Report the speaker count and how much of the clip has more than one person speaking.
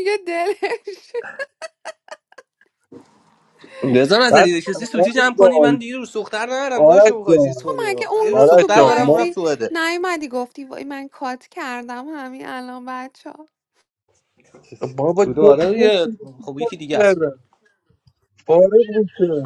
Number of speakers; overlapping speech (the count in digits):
3, about 28%